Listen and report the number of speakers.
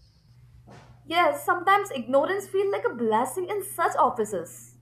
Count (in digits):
1